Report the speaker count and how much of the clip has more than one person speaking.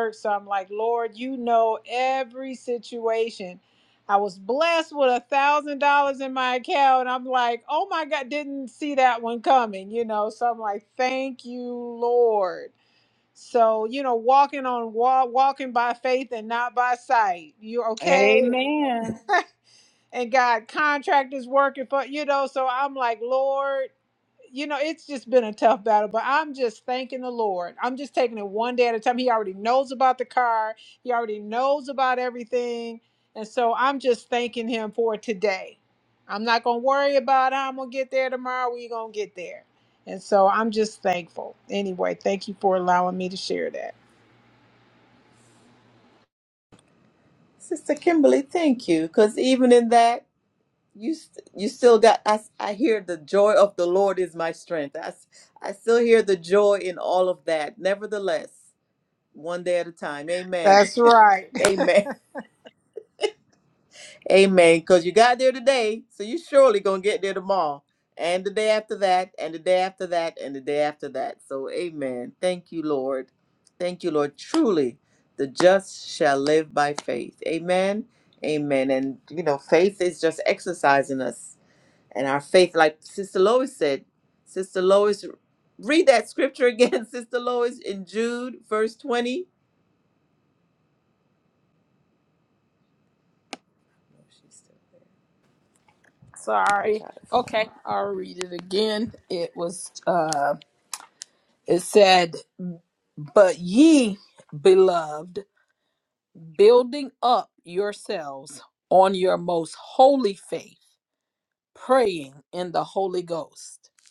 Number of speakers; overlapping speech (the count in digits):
4, about 1%